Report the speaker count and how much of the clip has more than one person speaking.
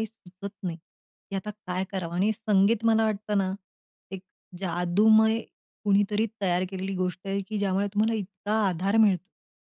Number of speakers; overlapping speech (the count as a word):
one, no overlap